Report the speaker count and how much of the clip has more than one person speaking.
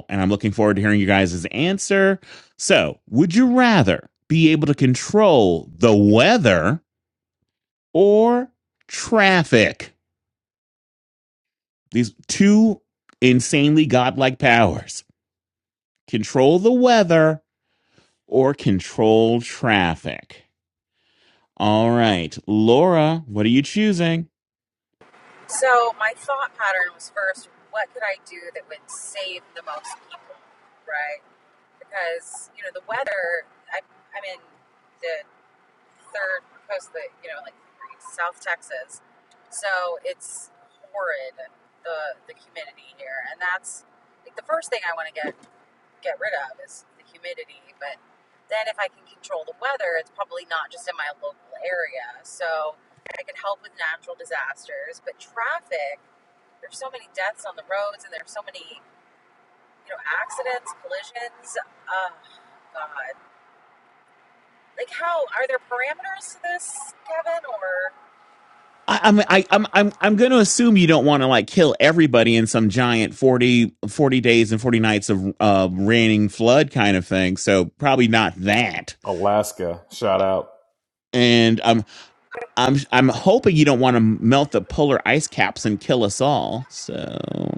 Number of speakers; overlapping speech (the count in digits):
3, no overlap